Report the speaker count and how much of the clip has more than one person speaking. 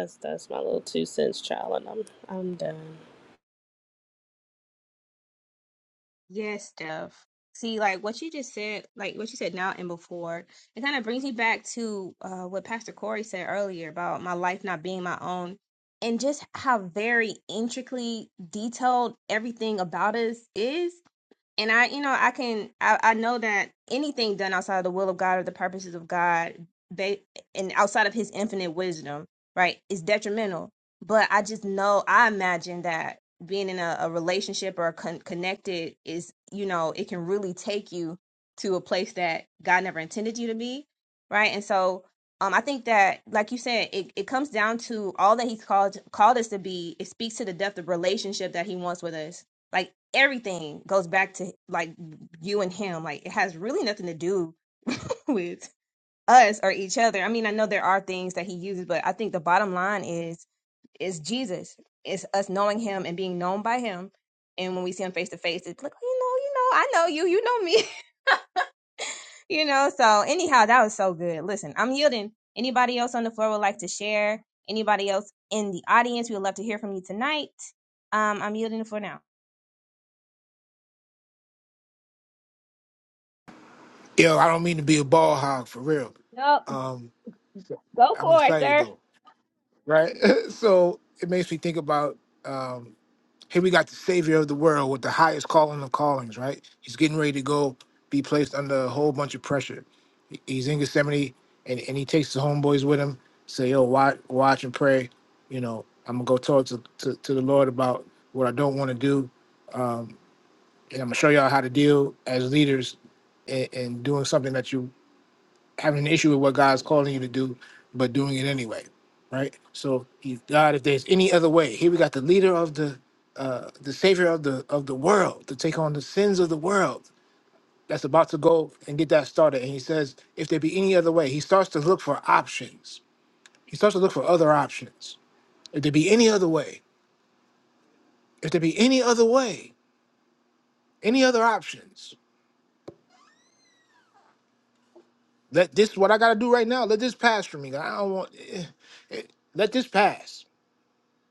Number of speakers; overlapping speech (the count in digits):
3, under 1%